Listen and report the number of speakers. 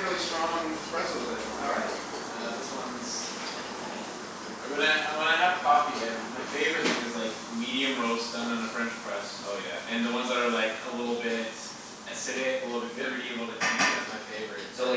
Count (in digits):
2